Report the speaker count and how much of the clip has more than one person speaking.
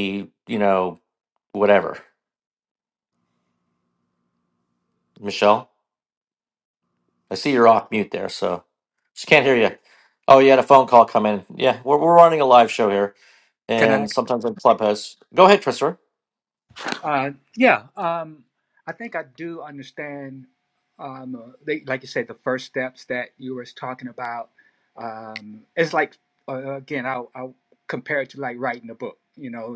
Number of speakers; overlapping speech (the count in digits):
2, about 1%